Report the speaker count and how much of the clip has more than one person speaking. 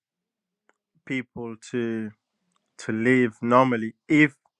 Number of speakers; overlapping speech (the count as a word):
one, no overlap